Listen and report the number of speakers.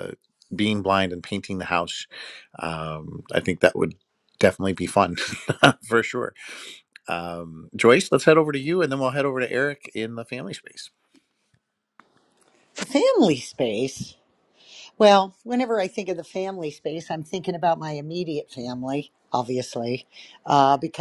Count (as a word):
two